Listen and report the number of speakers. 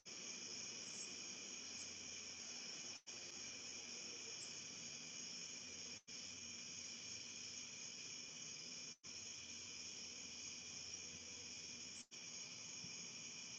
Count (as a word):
zero